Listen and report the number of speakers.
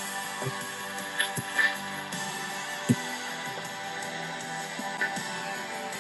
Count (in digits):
0